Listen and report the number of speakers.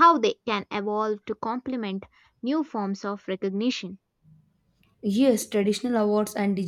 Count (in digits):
2